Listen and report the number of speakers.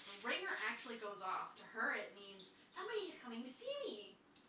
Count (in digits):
1